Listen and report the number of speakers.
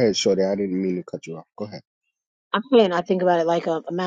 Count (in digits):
2